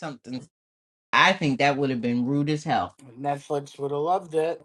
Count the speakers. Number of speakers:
2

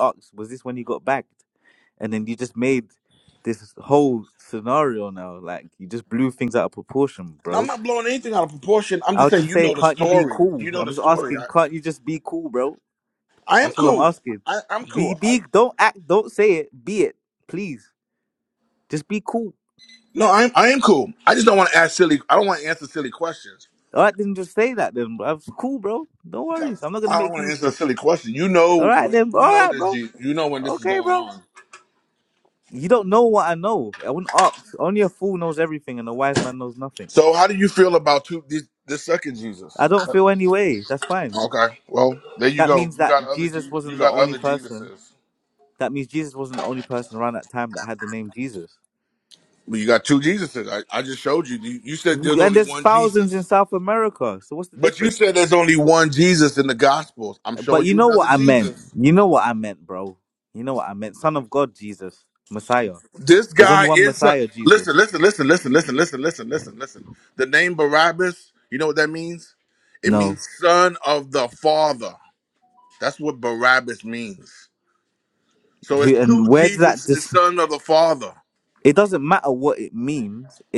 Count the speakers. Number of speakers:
2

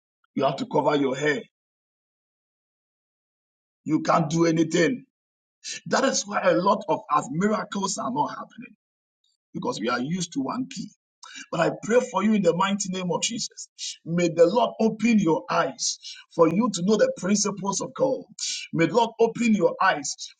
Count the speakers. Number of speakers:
1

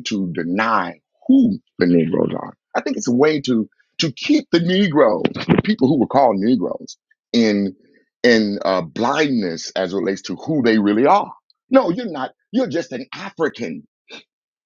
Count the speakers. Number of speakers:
1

